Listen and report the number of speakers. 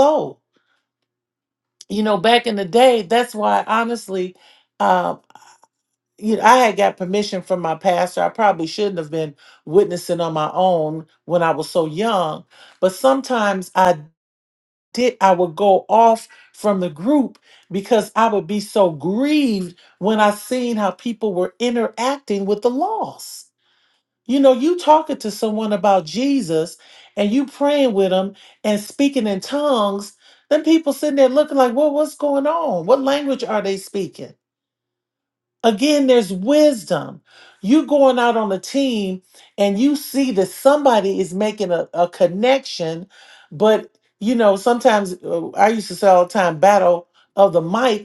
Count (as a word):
one